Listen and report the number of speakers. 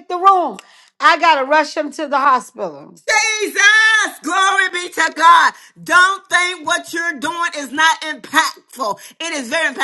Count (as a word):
two